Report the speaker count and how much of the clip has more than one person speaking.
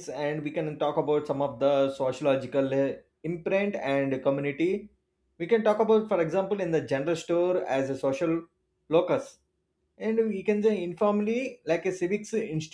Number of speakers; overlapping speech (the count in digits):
1, no overlap